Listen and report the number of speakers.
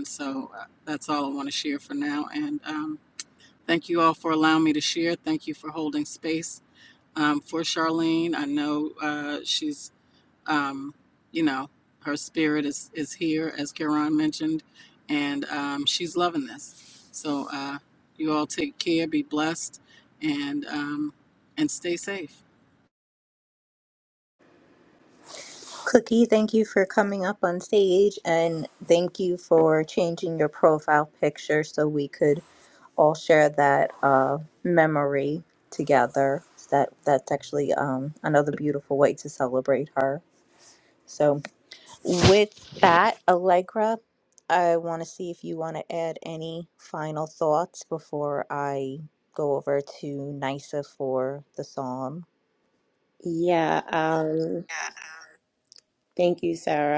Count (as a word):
three